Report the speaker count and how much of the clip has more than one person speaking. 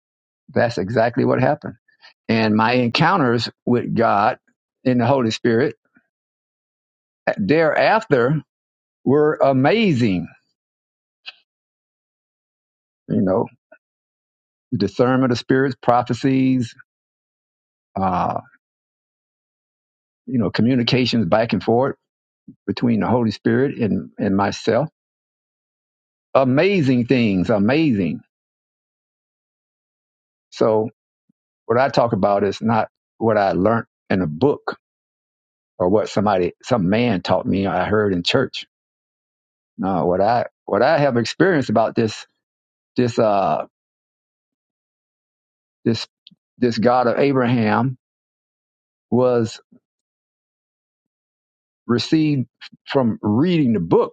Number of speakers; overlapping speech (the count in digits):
1, no overlap